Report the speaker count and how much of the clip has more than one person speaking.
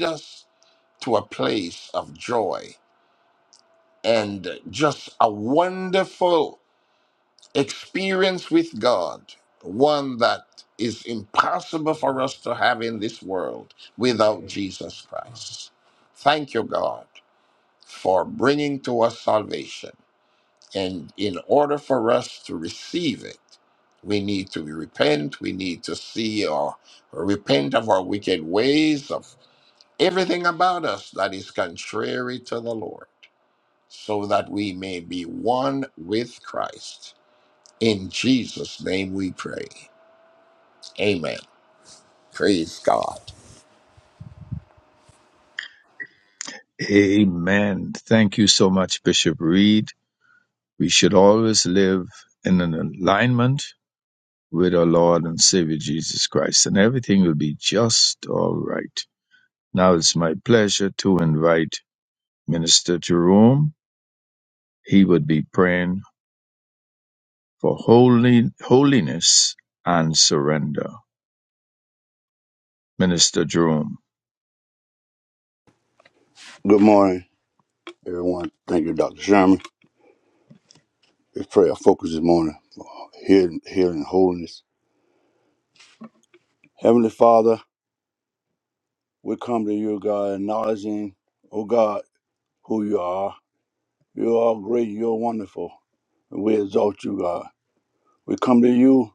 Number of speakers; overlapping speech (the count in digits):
3, no overlap